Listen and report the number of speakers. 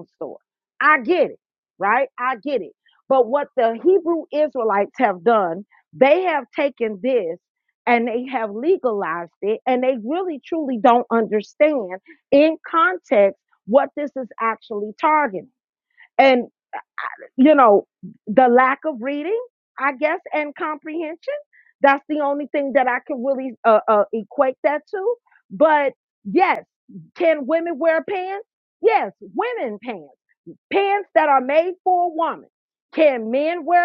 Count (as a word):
one